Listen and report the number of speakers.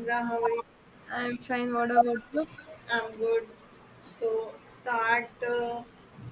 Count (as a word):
two